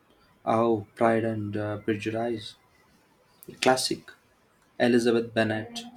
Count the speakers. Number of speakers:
one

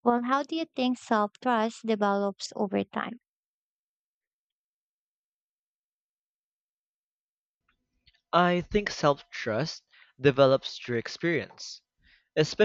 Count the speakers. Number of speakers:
two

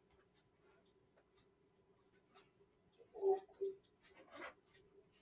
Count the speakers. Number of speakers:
zero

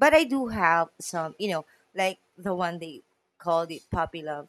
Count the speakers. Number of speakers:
one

